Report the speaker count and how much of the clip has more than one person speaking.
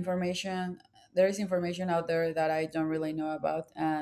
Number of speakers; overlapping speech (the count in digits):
1, no overlap